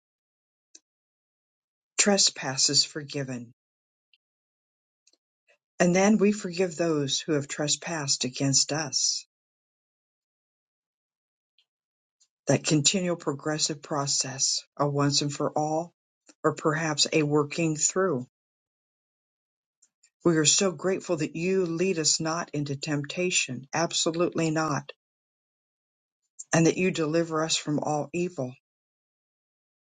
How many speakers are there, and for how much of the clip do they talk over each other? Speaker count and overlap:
1, no overlap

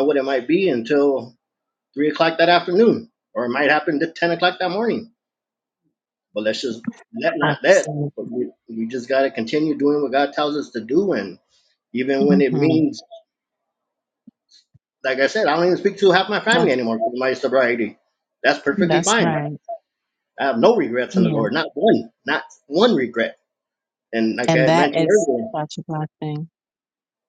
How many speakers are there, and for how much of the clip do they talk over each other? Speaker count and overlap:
2, about 11%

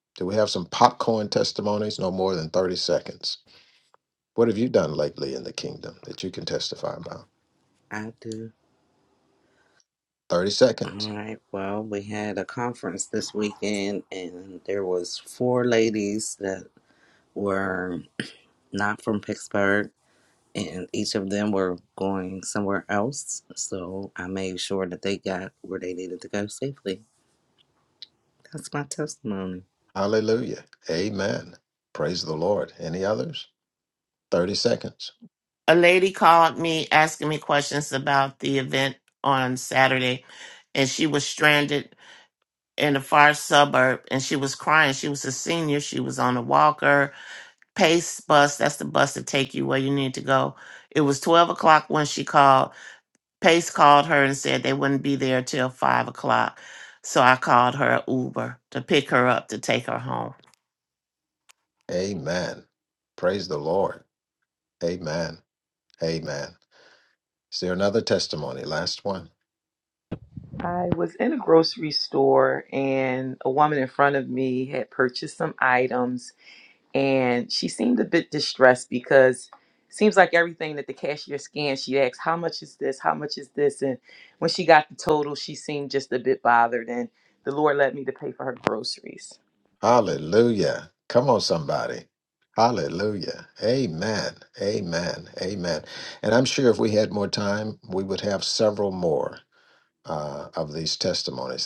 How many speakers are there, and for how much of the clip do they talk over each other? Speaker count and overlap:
4, under 1%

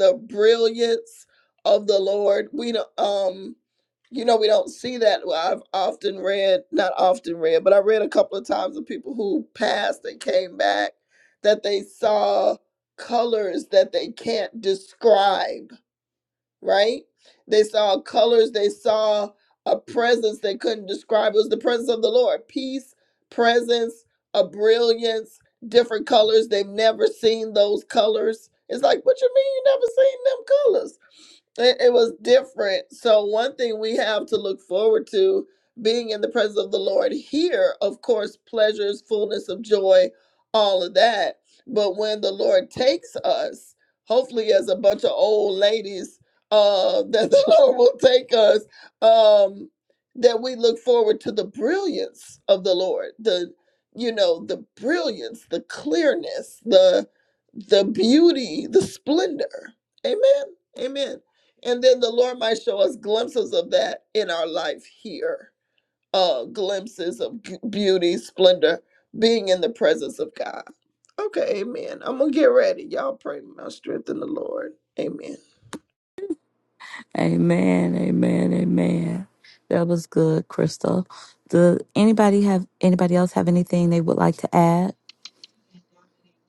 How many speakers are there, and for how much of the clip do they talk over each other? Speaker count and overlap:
2, no overlap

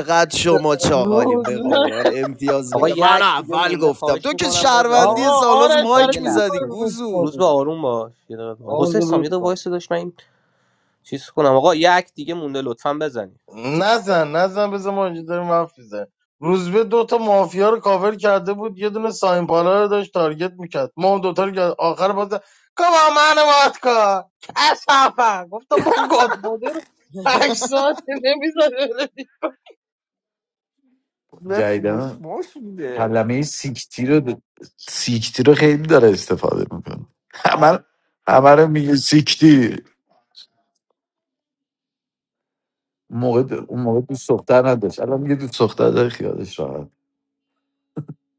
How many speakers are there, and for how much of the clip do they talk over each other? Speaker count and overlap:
5, about 14%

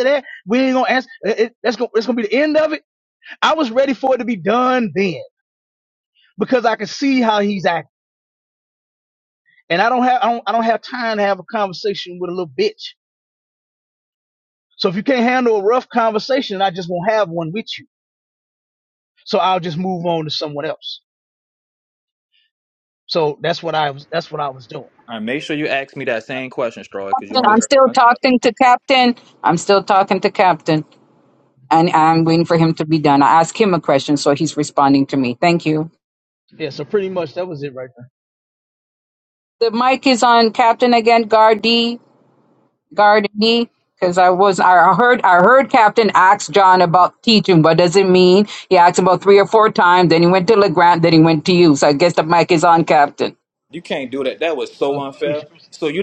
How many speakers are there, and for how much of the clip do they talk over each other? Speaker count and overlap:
3, about 2%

